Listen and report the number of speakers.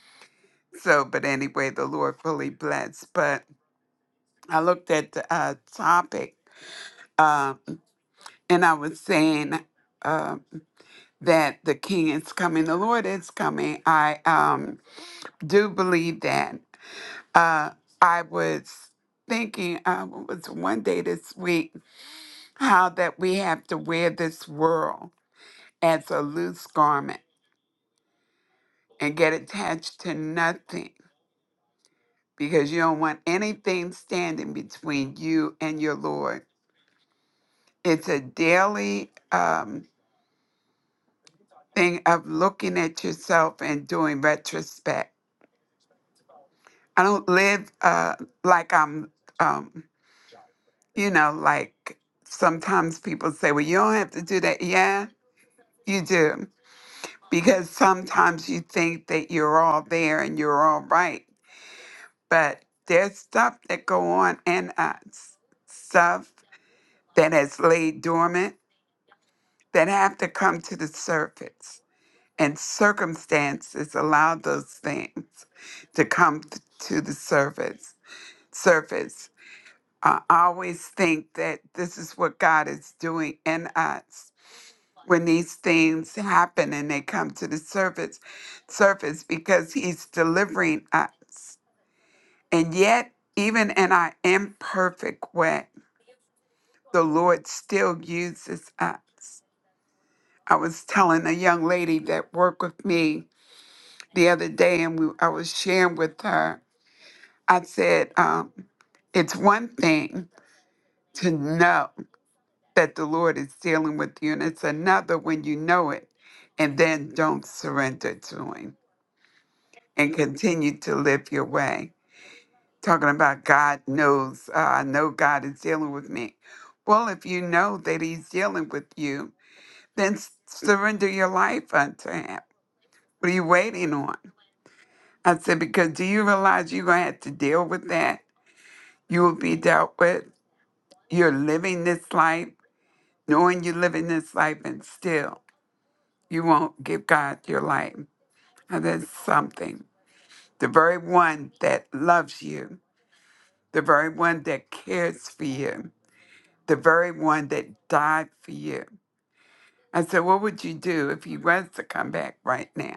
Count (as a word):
one